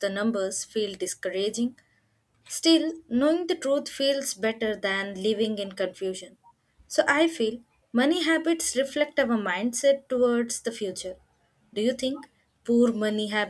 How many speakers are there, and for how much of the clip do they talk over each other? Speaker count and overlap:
1, no overlap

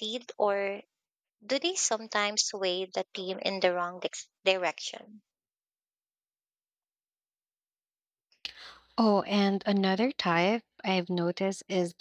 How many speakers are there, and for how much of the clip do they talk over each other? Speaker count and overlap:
2, no overlap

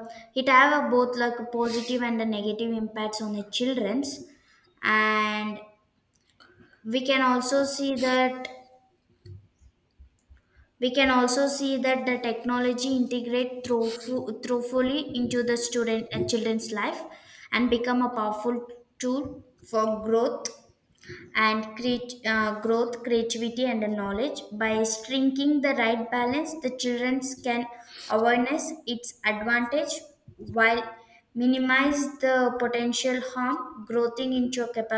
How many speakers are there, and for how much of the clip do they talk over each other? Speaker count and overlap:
1, no overlap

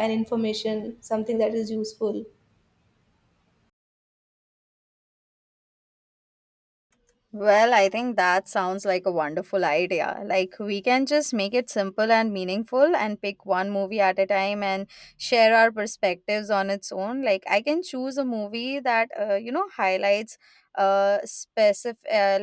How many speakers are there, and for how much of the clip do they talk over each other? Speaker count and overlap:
2, no overlap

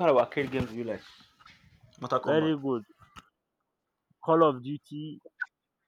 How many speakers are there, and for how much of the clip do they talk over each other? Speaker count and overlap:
2, no overlap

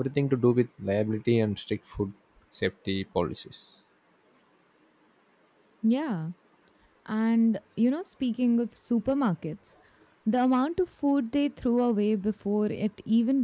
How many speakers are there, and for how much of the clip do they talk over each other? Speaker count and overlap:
2, no overlap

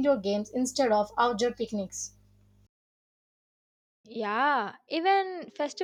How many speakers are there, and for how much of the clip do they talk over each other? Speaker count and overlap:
2, no overlap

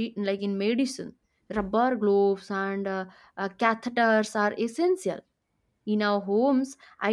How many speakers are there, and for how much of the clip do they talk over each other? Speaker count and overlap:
1, no overlap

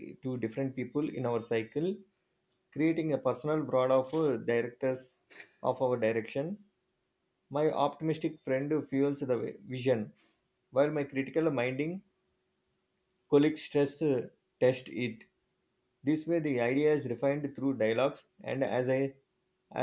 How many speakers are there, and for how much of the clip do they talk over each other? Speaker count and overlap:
1, no overlap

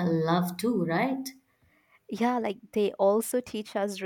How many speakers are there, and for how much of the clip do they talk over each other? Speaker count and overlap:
2, no overlap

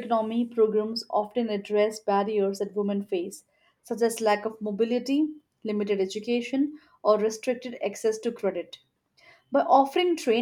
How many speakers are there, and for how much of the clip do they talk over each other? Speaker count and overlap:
1, no overlap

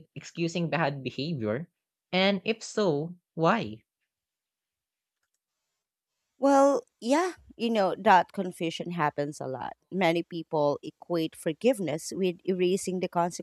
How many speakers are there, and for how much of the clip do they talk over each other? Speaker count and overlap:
2, no overlap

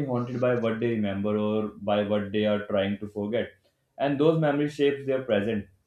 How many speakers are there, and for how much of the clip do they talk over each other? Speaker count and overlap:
1, no overlap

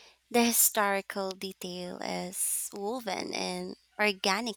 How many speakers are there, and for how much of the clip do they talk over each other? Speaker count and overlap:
1, no overlap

